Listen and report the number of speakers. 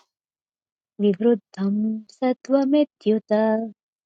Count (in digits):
1